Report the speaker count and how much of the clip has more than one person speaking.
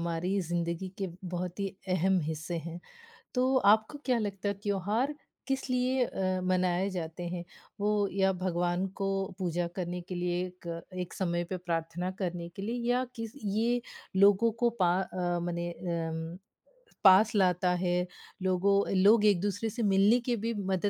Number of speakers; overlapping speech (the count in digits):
1, no overlap